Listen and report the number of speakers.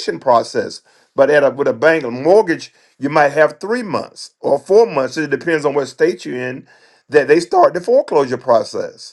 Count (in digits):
1